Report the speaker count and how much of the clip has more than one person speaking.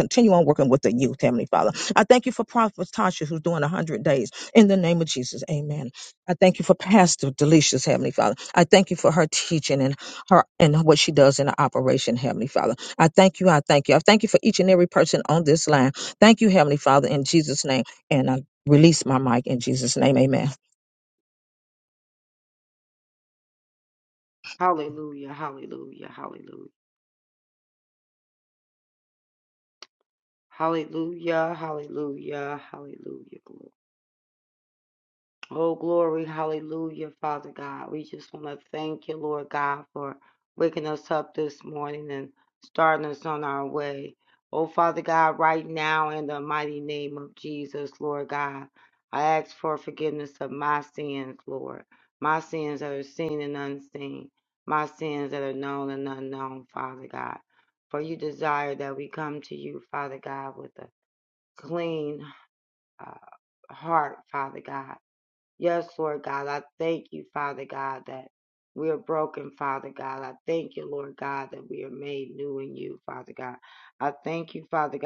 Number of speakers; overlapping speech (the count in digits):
2, no overlap